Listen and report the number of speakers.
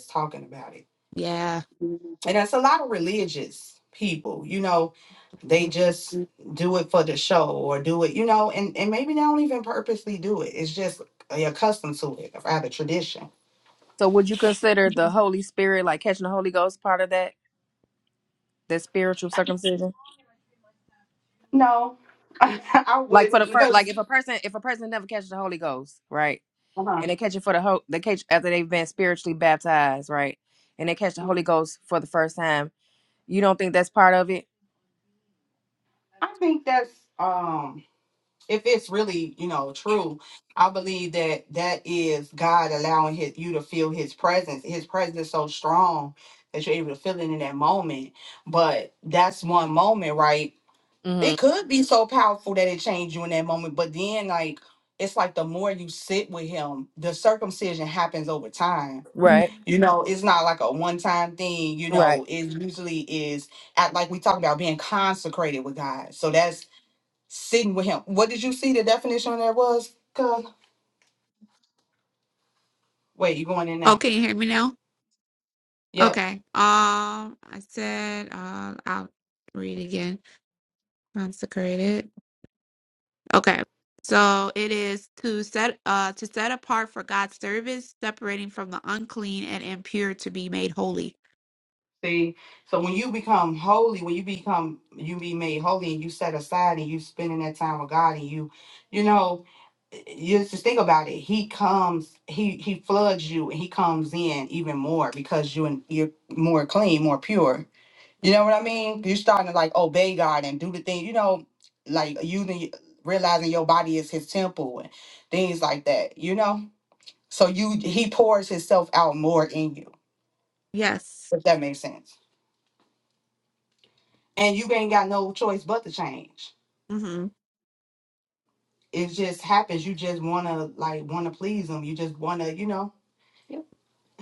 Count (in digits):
3